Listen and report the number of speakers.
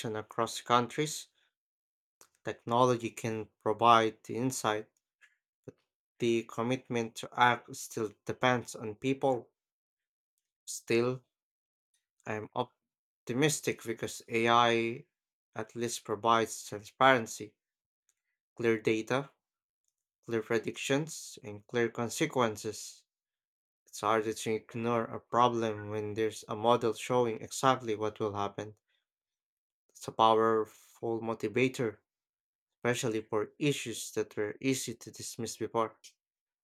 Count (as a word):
one